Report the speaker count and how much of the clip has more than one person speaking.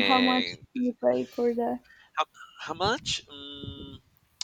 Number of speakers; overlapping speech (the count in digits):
2, about 13%